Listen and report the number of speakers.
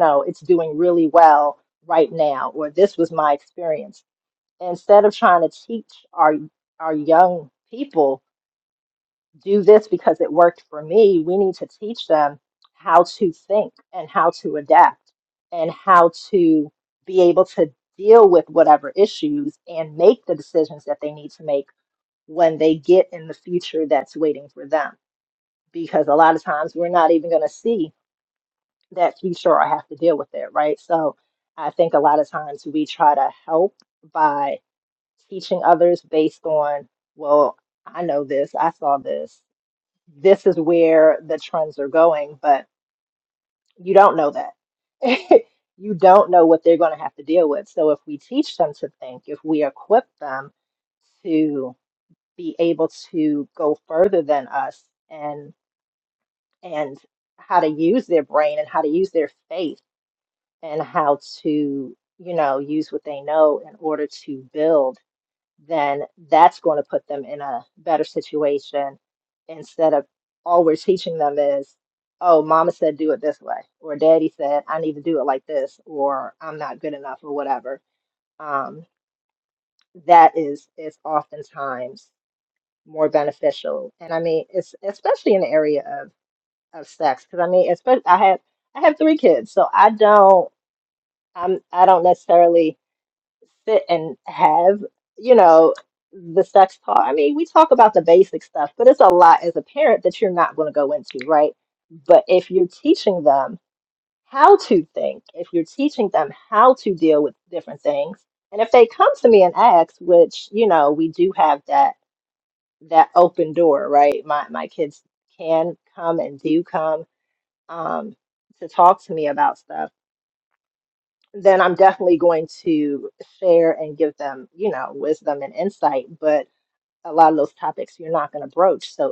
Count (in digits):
1